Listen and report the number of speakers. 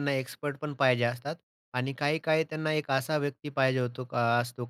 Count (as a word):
one